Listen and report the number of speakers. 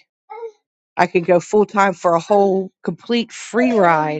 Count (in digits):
1